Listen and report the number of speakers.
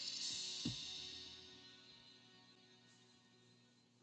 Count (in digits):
0